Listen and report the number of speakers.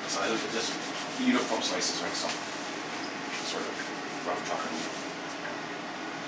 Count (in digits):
1